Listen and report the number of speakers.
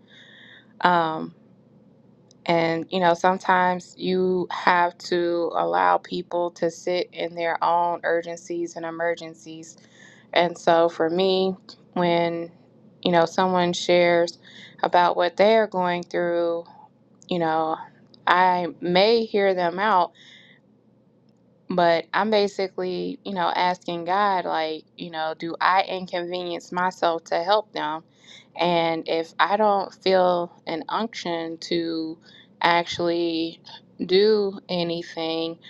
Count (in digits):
1